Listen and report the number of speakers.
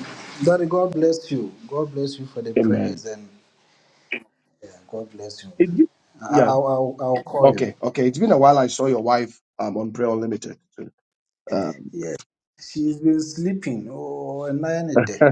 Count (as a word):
two